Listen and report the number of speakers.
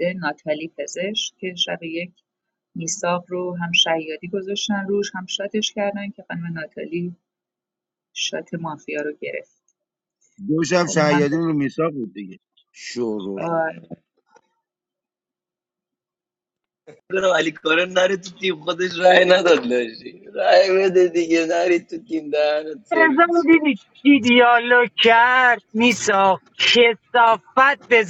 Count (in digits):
4